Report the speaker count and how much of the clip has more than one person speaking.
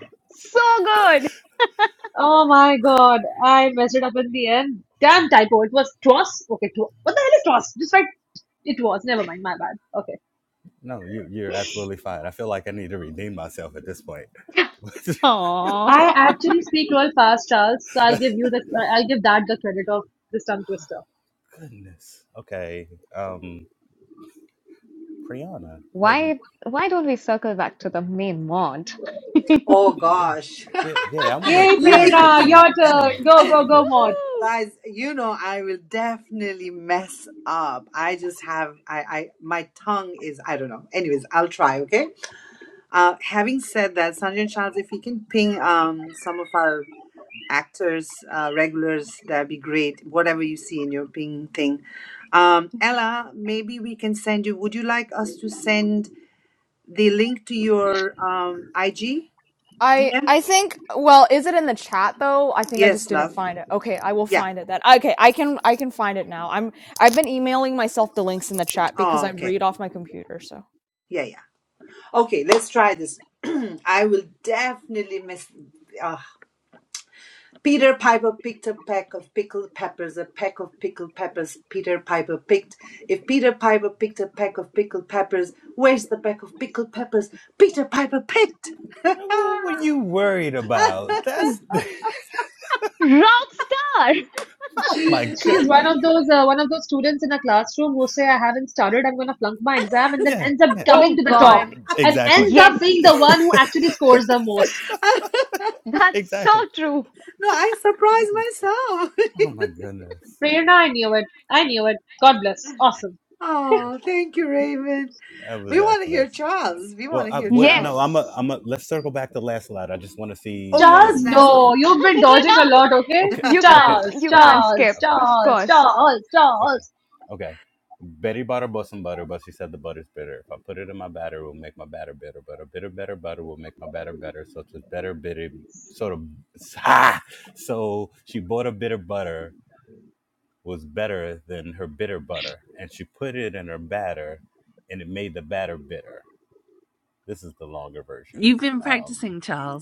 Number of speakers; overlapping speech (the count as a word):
six, about 10%